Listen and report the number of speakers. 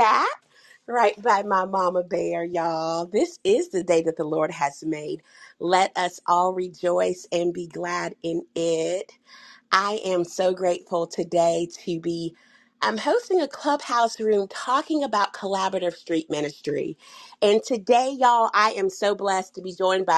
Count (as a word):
one